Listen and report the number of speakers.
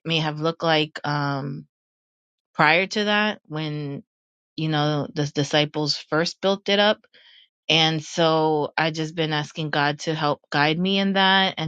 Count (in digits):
1